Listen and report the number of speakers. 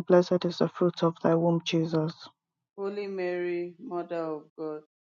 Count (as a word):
two